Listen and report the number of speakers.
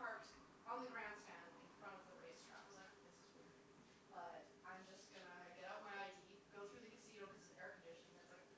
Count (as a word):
one